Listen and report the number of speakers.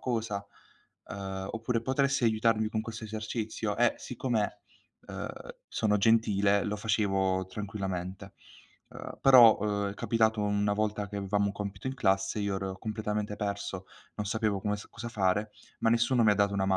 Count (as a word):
one